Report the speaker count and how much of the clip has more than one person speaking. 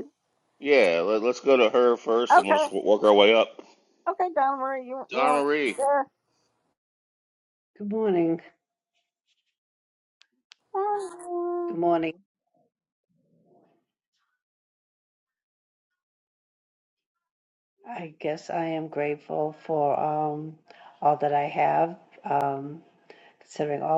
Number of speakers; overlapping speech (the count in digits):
3, about 4%